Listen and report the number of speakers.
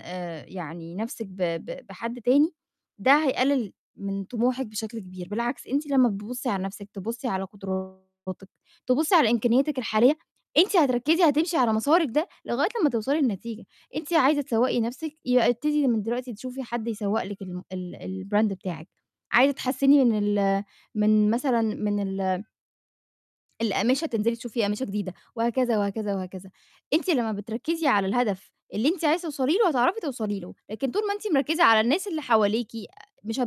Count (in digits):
1